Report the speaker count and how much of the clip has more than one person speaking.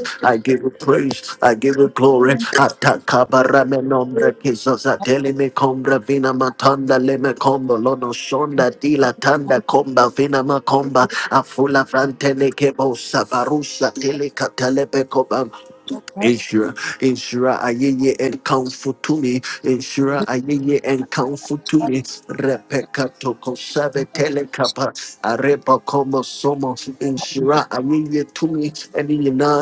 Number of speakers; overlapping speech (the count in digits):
1, no overlap